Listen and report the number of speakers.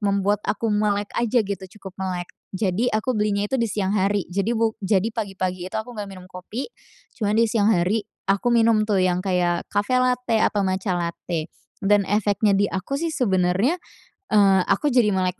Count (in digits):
1